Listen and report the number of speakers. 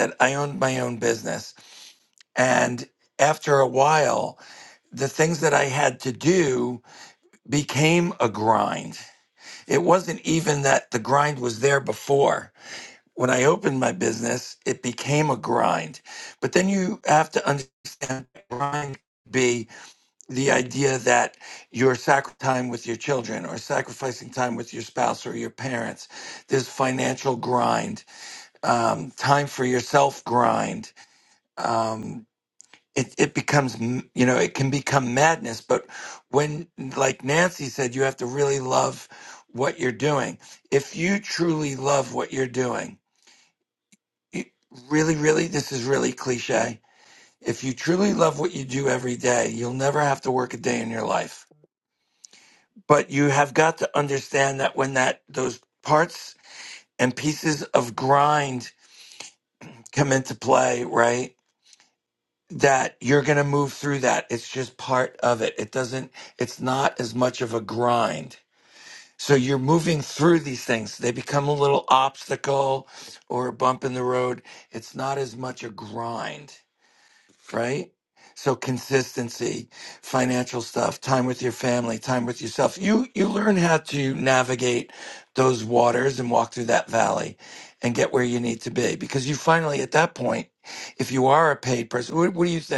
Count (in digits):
1